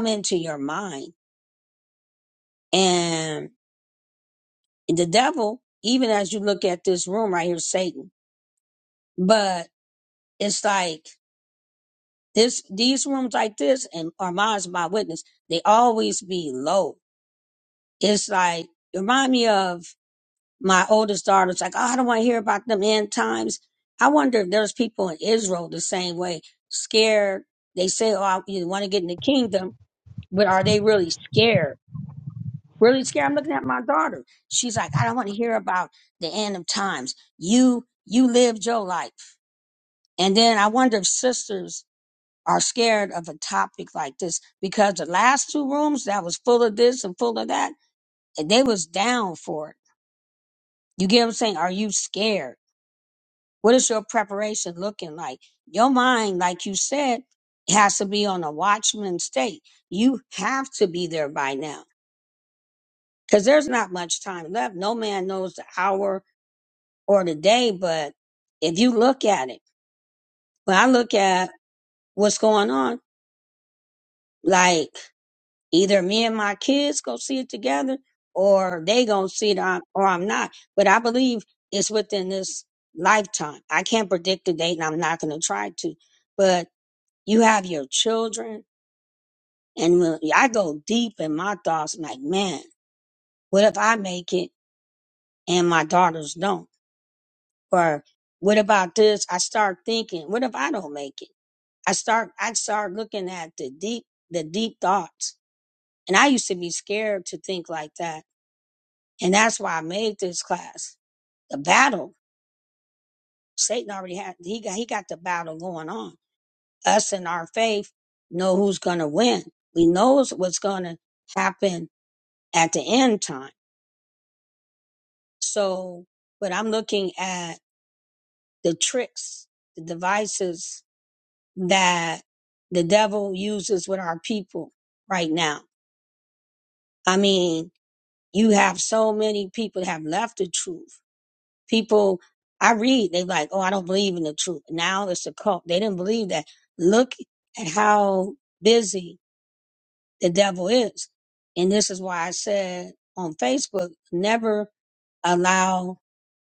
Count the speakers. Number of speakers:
1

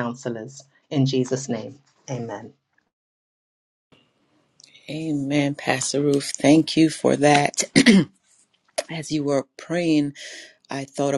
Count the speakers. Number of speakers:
2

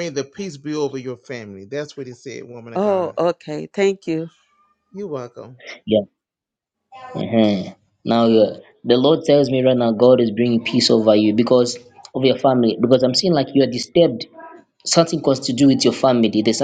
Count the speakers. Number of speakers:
3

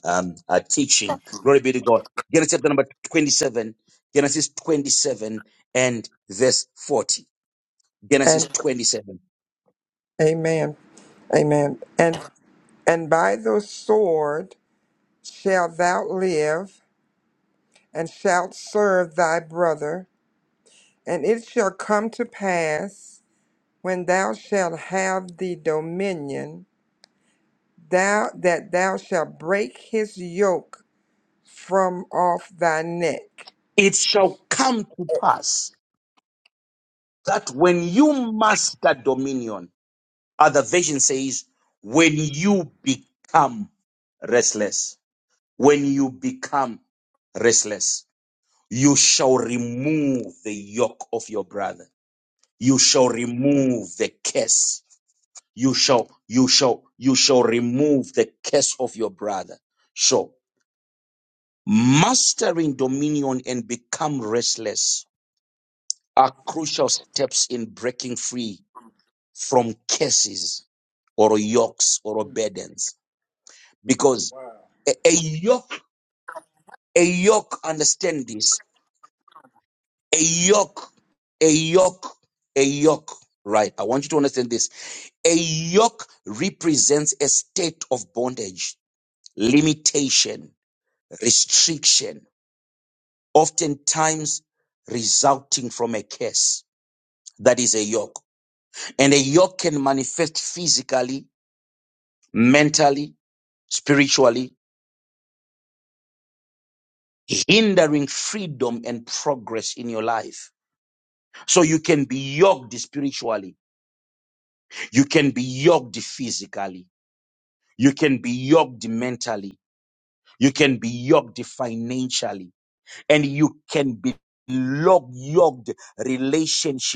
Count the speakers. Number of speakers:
2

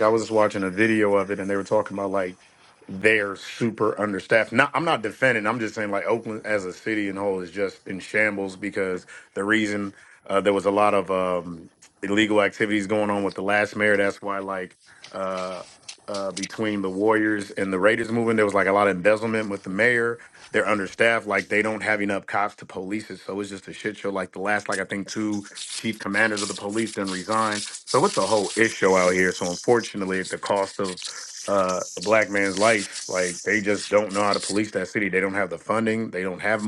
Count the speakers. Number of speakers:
1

